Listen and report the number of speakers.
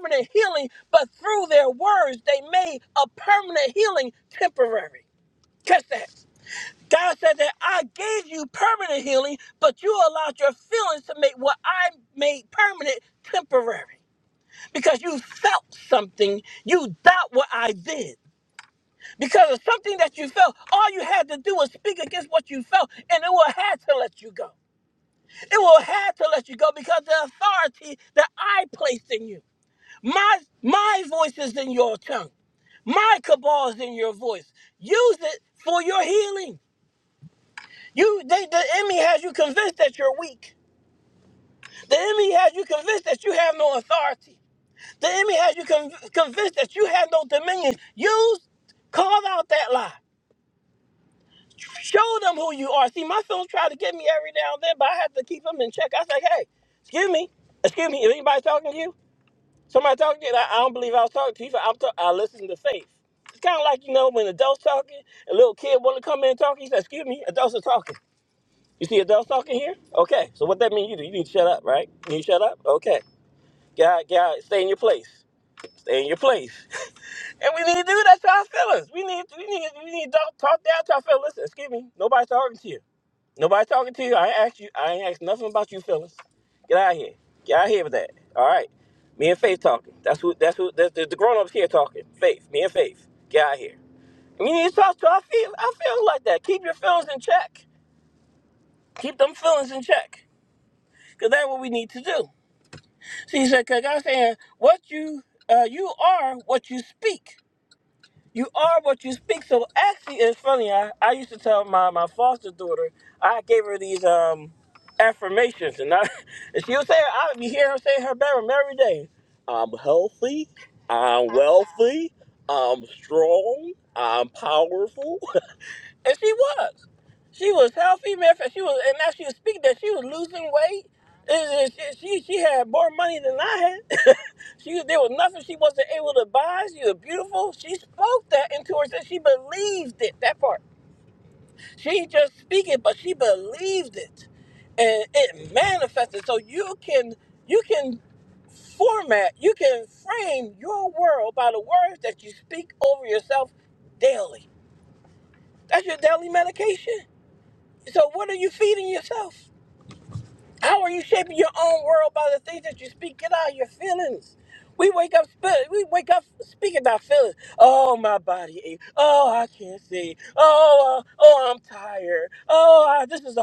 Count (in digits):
1